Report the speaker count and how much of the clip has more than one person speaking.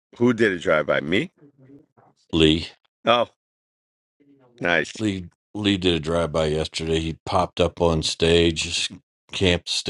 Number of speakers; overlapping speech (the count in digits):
2, about 1%